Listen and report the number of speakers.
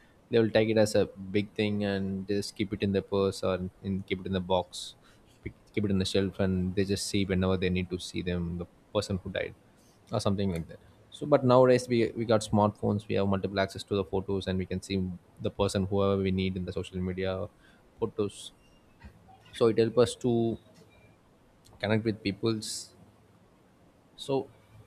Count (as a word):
one